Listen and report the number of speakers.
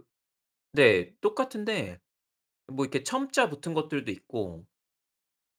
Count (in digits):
1